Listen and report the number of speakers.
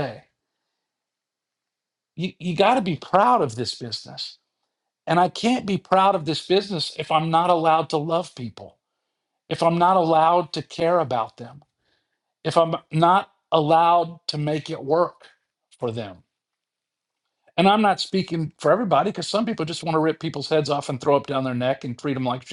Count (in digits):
1